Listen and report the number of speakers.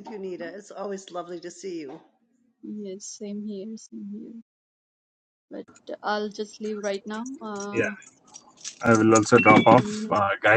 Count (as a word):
three